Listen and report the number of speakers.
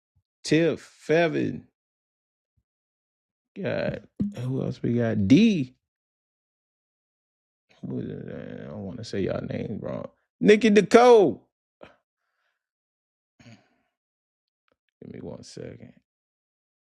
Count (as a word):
one